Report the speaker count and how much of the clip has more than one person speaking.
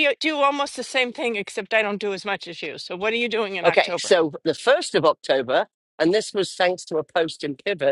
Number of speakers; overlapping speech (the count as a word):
two, about 6%